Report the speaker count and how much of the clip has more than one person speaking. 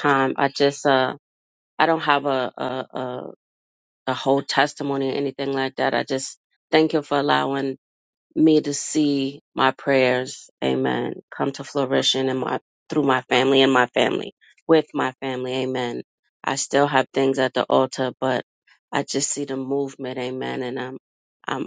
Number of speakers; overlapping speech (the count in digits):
1, no overlap